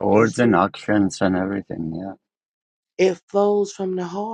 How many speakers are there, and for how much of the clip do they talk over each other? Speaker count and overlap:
2, about 10%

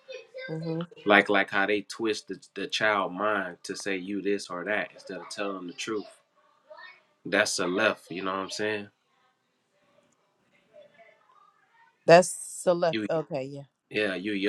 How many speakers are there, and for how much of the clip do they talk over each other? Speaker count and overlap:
2, about 1%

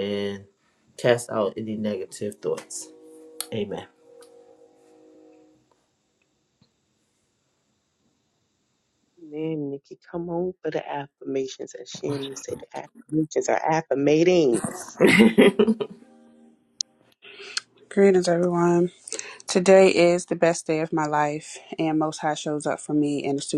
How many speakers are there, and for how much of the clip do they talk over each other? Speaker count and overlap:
3, no overlap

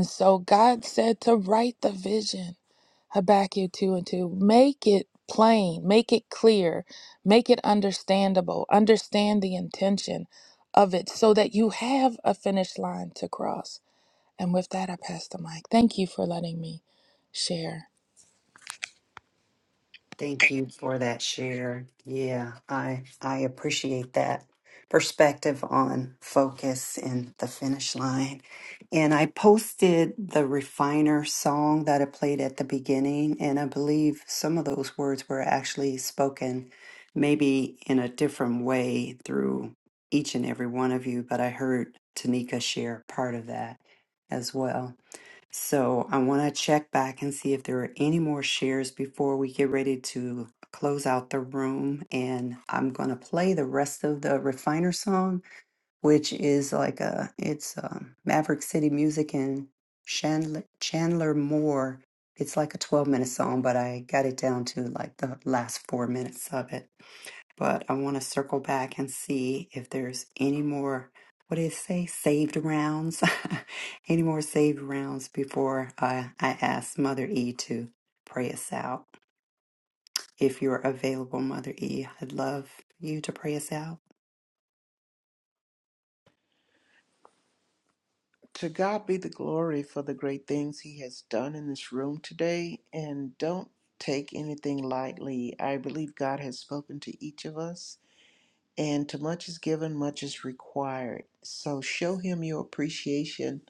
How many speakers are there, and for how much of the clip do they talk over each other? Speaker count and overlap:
3, no overlap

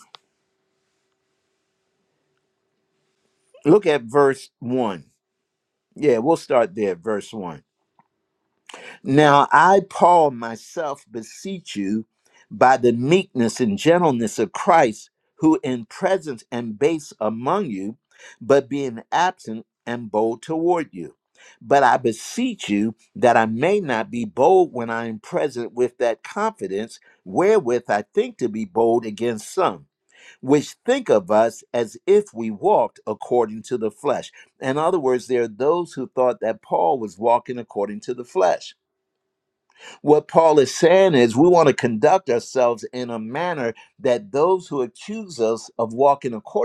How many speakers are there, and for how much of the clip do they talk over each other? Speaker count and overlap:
1, no overlap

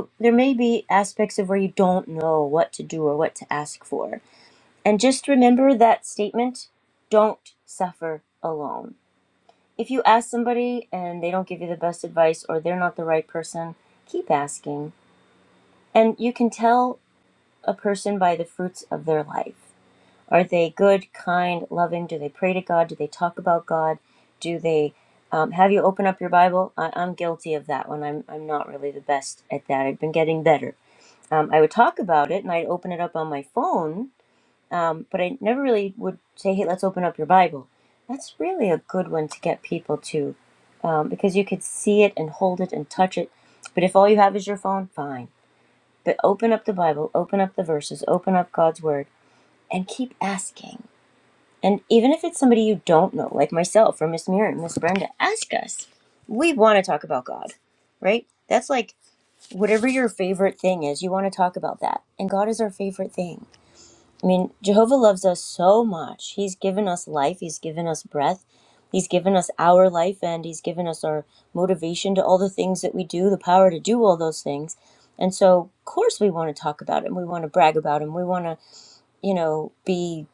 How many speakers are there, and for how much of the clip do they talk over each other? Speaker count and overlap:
1, no overlap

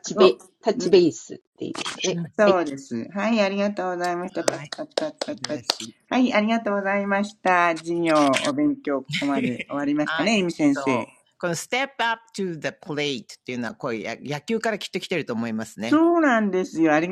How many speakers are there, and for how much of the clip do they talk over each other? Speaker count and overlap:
3, about 13%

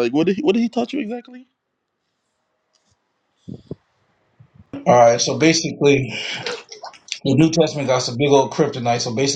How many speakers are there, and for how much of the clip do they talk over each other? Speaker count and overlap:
2, no overlap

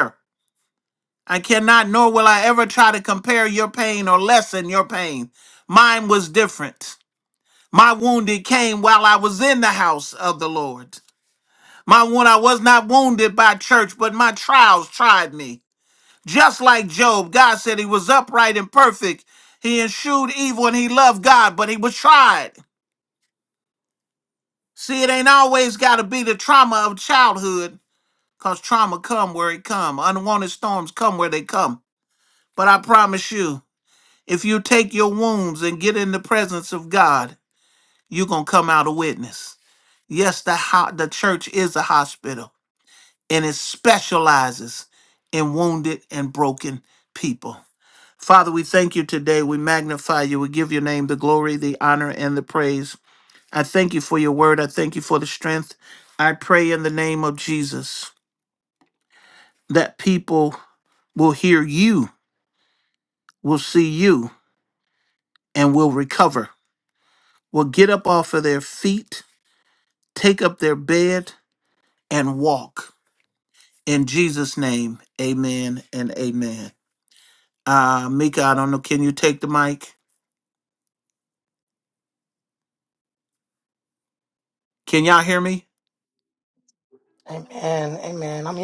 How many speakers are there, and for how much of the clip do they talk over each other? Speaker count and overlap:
2, no overlap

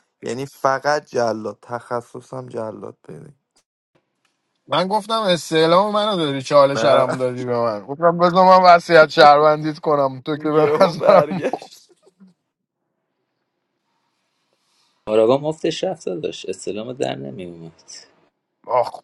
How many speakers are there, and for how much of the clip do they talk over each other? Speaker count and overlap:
3, about 5%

